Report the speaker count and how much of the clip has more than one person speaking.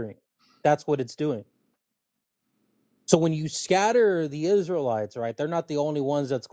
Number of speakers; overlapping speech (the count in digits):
1, no overlap